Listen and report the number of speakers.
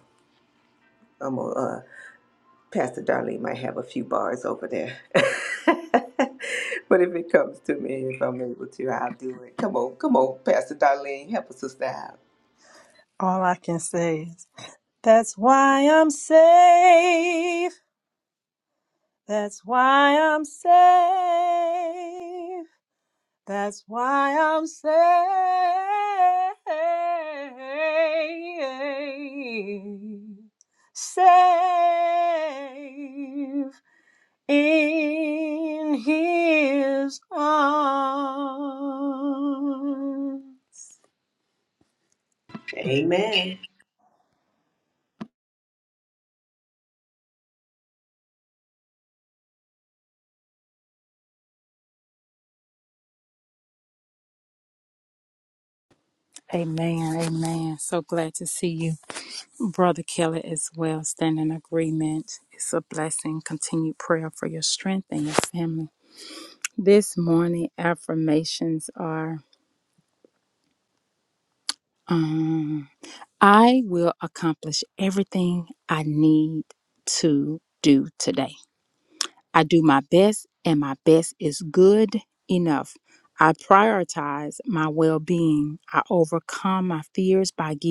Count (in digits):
3